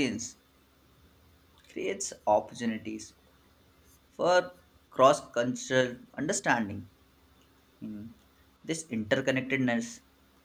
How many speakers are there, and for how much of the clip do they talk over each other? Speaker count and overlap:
1, no overlap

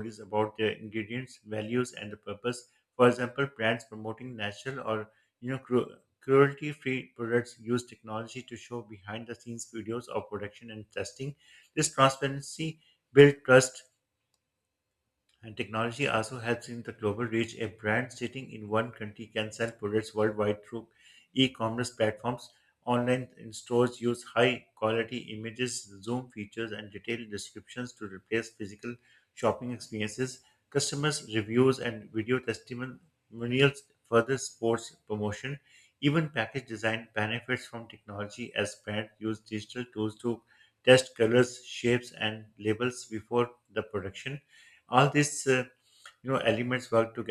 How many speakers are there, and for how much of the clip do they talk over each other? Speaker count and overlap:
1, no overlap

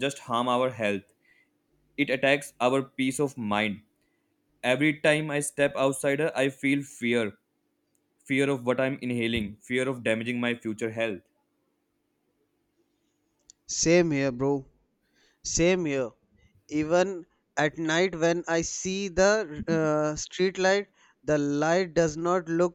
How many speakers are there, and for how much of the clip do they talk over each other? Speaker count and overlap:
2, no overlap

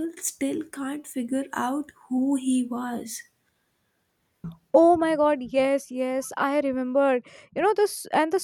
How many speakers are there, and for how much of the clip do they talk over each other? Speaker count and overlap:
2, no overlap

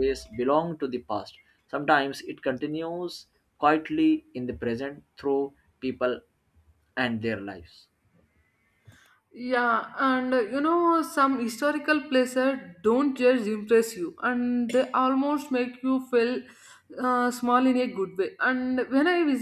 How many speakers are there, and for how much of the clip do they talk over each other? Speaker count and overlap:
2, no overlap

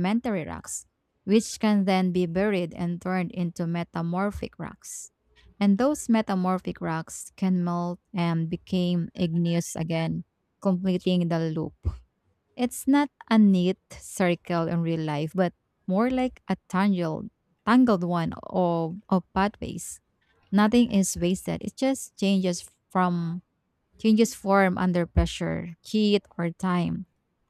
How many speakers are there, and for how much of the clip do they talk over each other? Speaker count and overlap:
1, no overlap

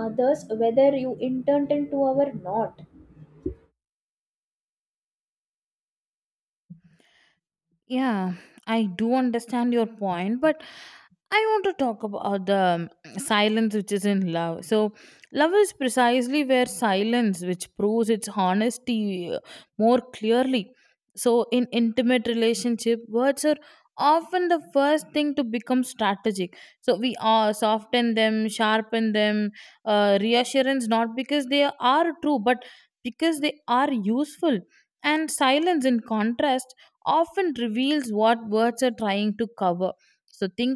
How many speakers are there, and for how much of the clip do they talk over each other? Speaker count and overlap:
2, no overlap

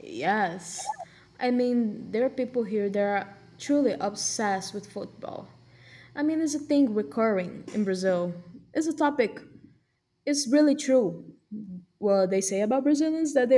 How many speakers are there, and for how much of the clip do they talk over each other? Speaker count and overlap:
1, no overlap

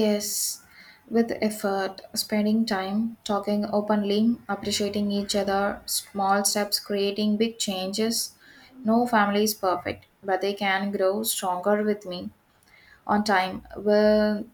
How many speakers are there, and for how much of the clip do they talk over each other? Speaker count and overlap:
1, no overlap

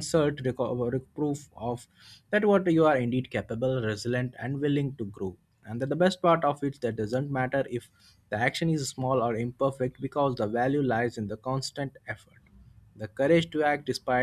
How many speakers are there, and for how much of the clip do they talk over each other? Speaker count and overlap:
1, no overlap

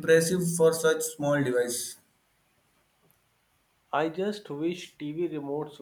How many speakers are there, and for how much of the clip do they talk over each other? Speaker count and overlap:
2, no overlap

